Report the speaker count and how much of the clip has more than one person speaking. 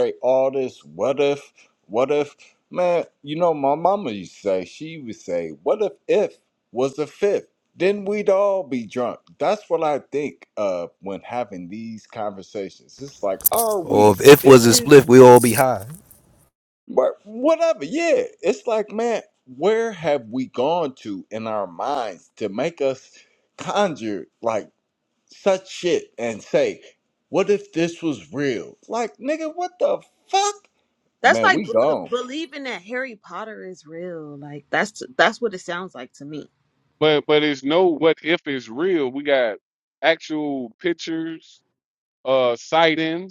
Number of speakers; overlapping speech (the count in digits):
4, about 4%